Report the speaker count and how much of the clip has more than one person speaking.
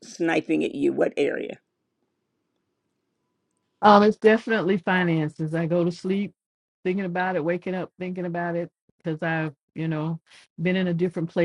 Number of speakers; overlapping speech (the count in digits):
2, no overlap